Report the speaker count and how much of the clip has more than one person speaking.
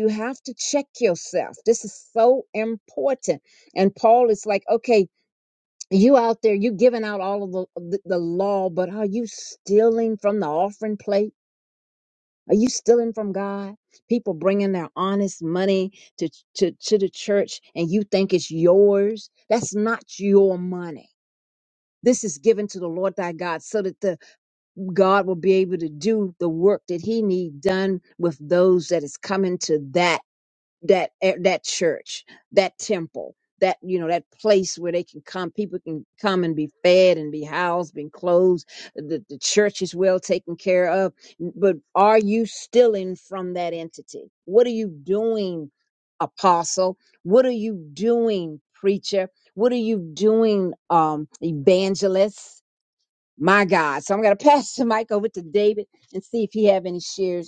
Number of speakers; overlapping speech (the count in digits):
1, no overlap